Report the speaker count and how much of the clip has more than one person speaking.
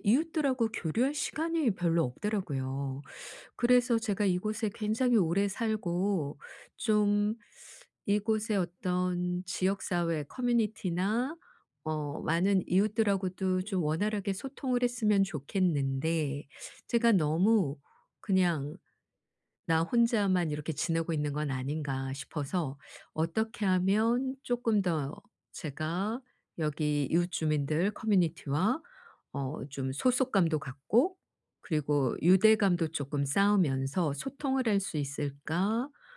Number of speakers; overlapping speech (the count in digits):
1, no overlap